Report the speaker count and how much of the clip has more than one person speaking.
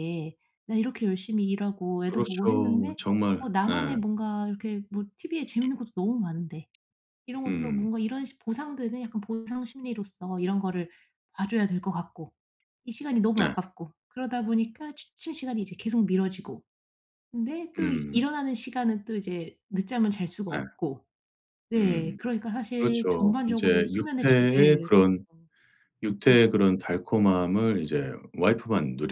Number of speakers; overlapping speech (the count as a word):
two, about 19%